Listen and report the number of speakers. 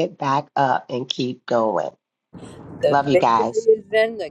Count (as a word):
two